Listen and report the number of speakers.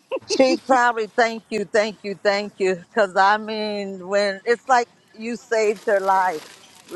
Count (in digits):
1